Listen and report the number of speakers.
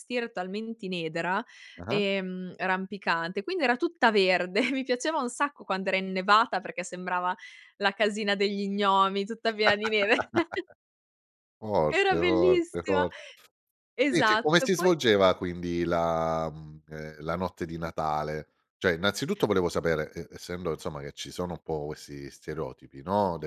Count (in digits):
2